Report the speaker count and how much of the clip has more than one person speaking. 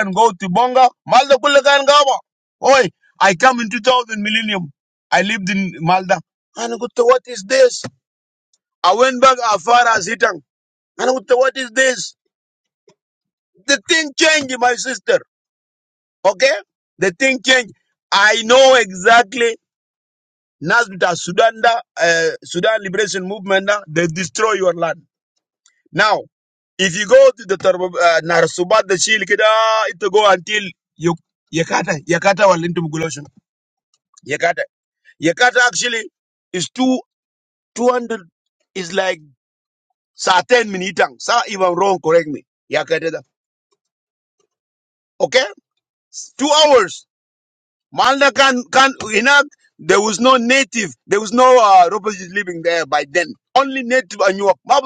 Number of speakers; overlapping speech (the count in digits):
1, no overlap